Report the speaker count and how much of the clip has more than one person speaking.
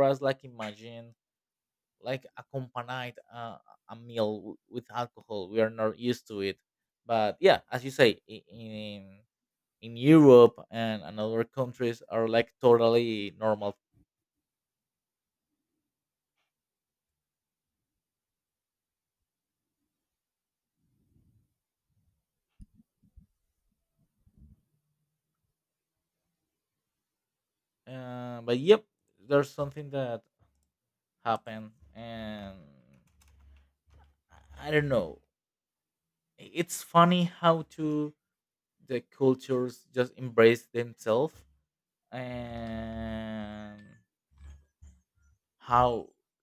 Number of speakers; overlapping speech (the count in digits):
1, no overlap